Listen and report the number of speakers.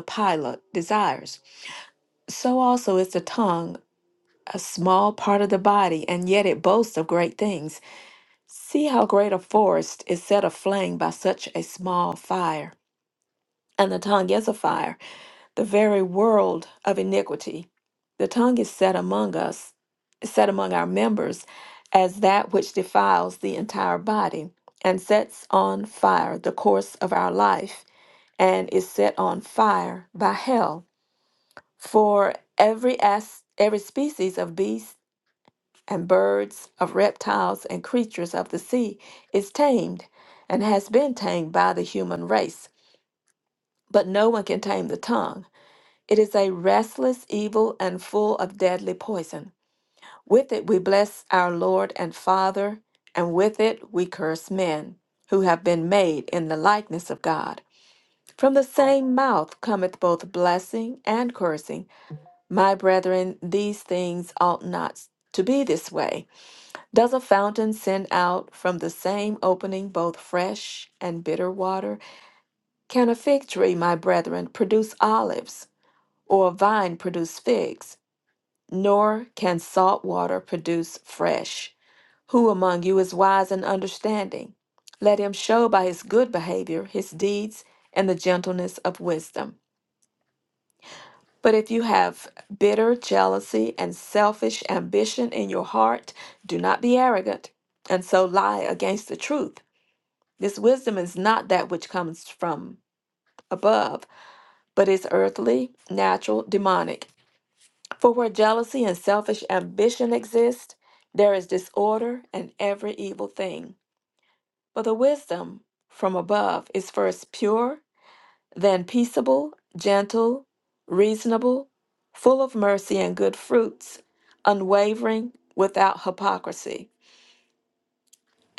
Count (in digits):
1